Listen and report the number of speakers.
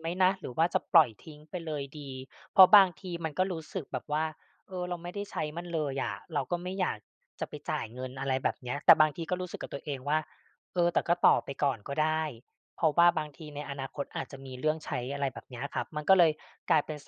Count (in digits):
1